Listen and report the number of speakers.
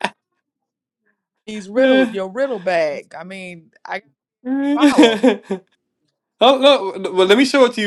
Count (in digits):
2